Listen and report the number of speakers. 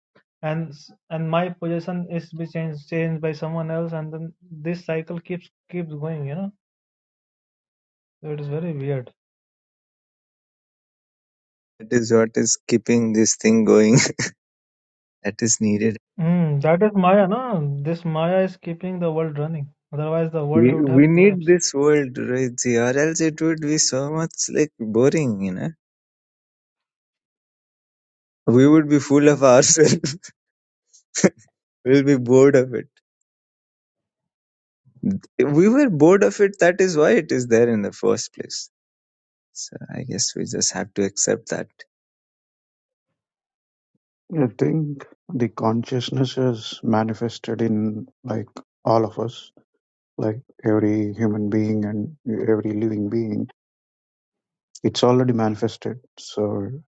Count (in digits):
3